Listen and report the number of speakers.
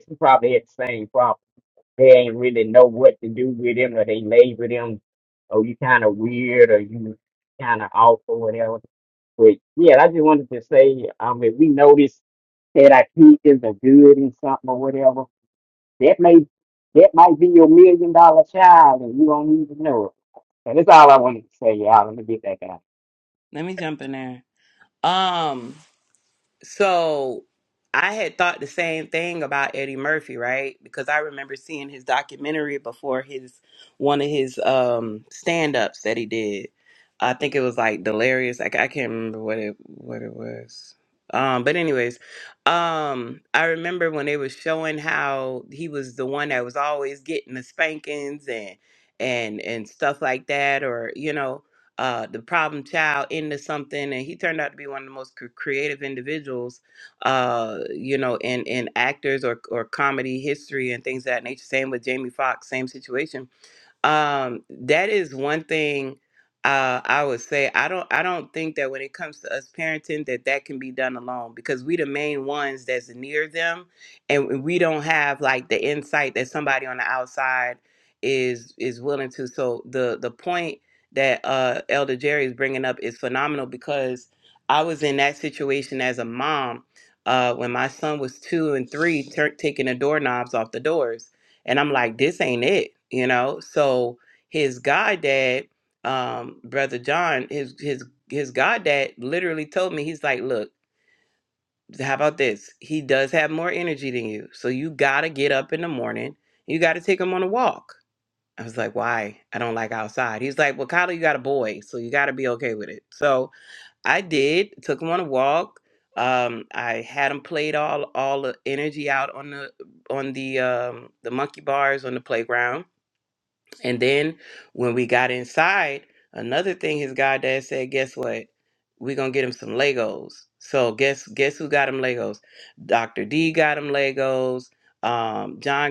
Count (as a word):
two